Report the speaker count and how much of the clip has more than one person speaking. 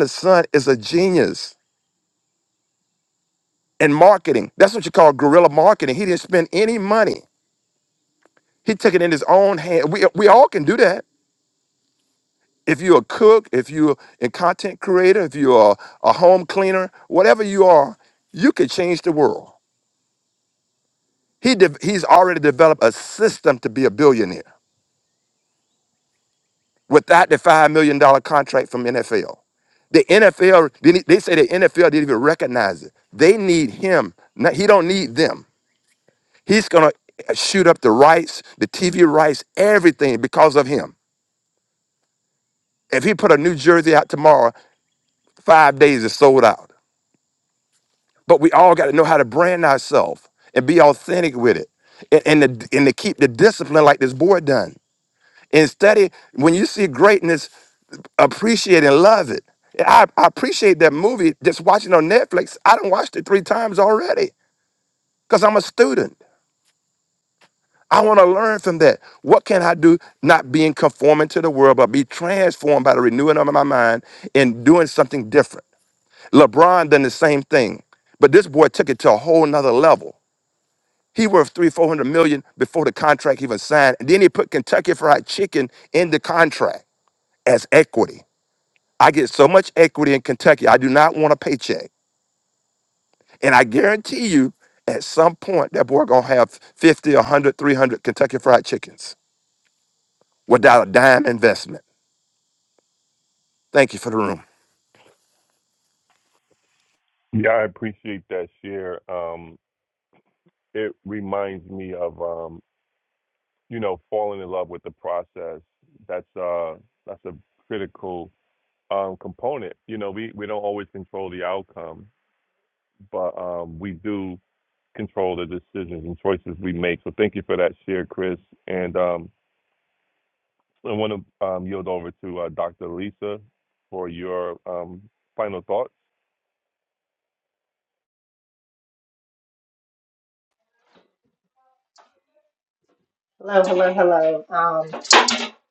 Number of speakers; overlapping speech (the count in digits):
3, no overlap